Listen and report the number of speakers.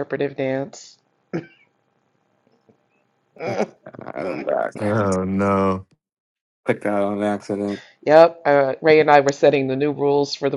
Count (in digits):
3